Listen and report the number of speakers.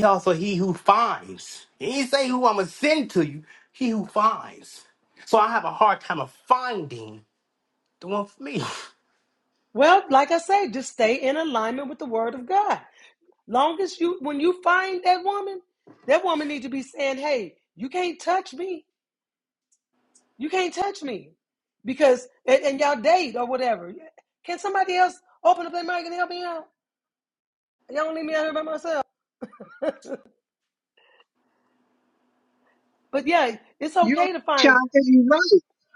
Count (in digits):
3